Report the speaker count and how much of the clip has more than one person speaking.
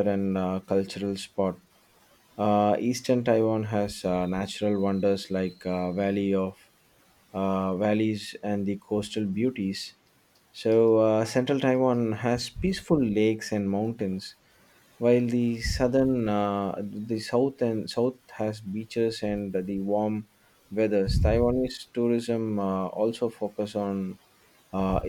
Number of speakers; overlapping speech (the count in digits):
1, no overlap